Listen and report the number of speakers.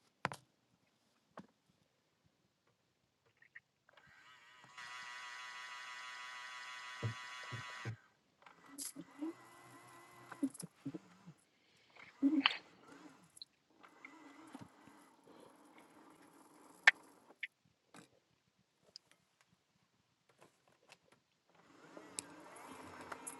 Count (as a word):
zero